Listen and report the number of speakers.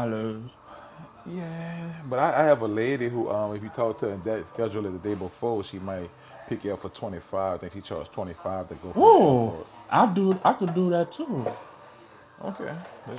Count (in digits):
2